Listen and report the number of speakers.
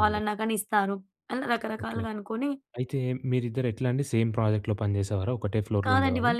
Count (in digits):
2